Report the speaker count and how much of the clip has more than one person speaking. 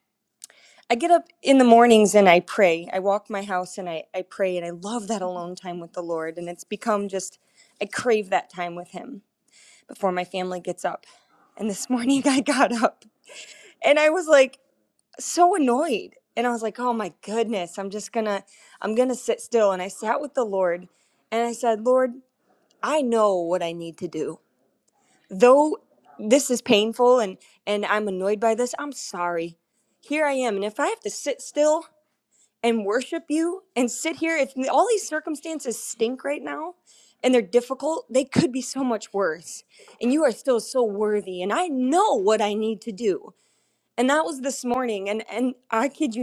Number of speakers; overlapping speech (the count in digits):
1, no overlap